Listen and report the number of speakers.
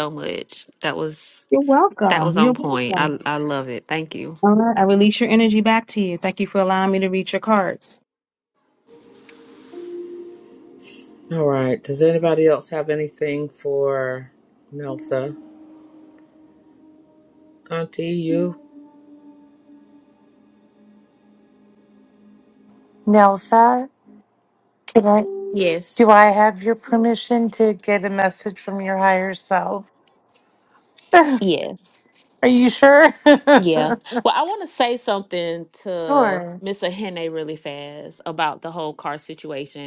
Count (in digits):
4